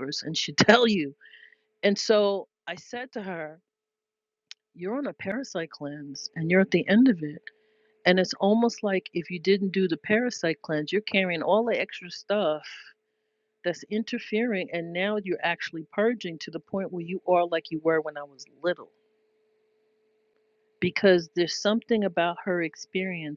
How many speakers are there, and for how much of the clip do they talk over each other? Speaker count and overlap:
1, no overlap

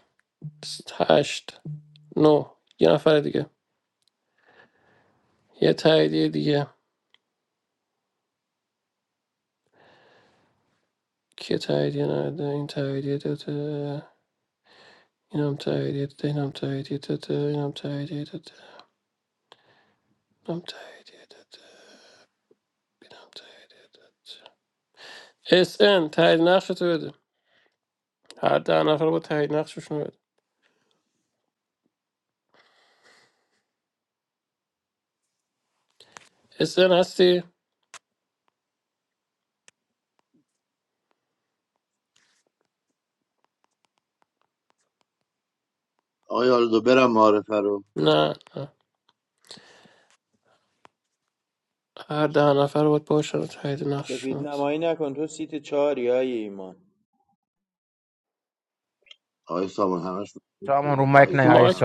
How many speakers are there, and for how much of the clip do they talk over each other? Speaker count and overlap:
4, about 1%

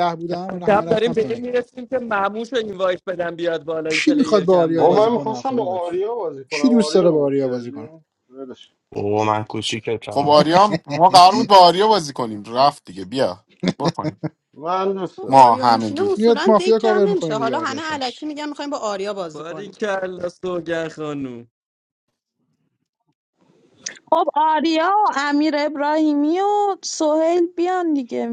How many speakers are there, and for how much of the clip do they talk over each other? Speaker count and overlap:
7, about 27%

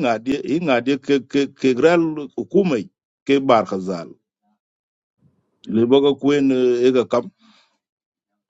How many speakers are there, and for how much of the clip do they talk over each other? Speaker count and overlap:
1, no overlap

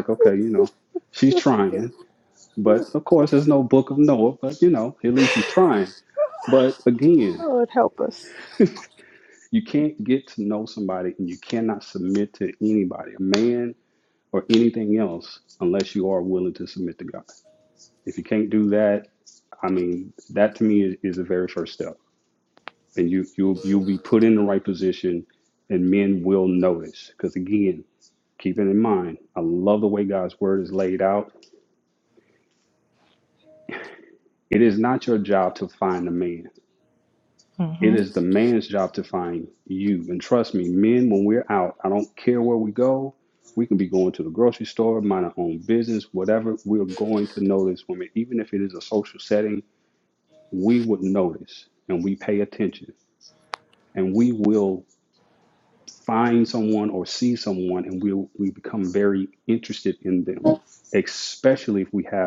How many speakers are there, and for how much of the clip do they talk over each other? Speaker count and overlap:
2, under 1%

